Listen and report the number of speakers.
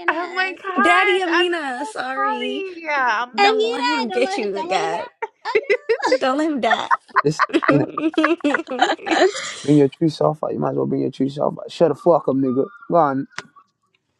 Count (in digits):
4